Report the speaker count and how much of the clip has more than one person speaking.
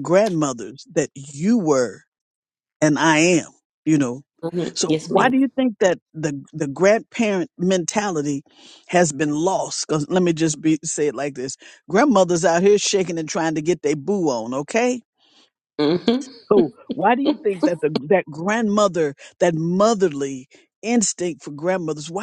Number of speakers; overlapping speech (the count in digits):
2, about 3%